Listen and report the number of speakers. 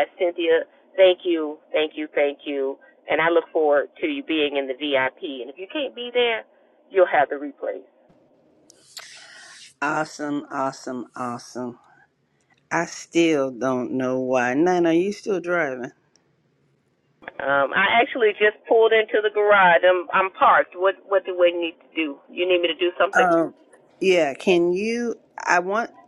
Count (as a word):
two